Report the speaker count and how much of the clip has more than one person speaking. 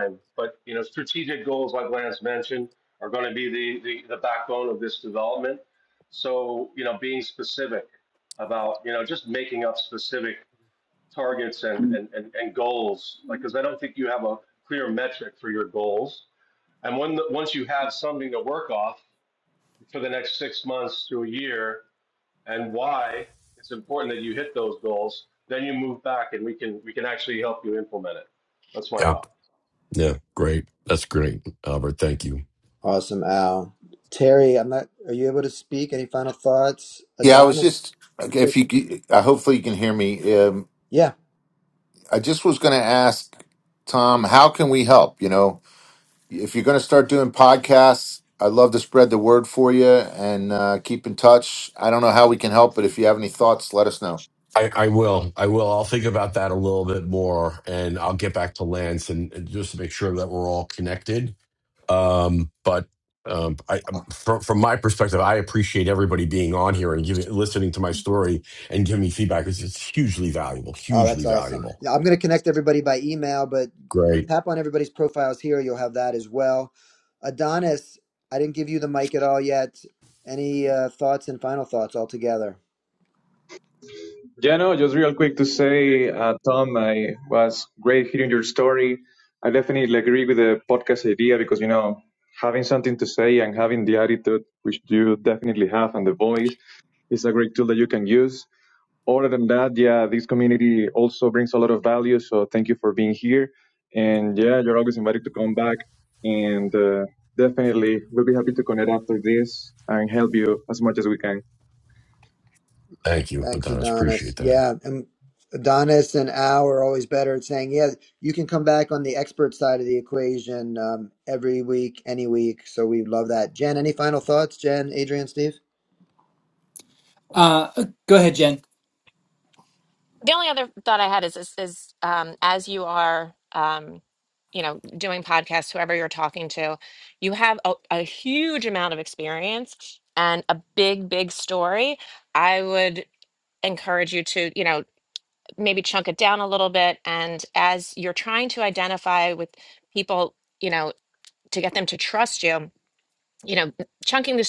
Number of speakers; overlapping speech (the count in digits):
7, about 2%